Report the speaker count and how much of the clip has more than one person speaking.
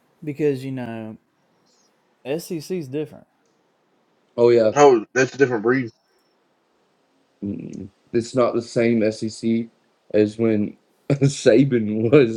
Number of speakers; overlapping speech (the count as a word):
three, under 1%